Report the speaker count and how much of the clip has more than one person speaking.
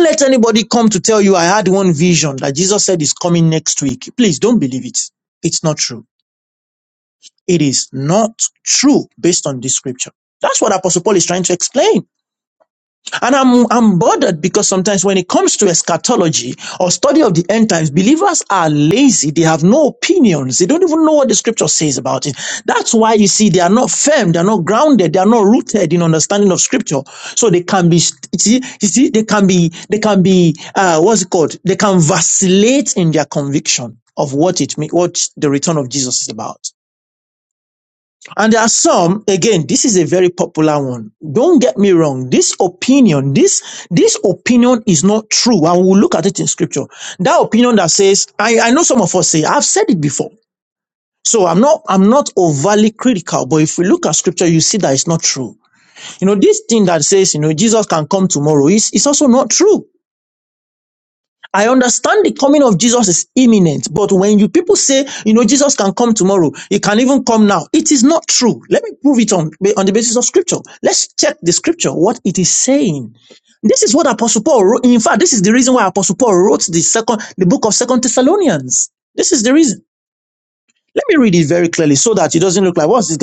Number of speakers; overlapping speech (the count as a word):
one, no overlap